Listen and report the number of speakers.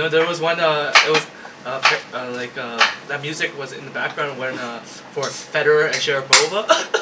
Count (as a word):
one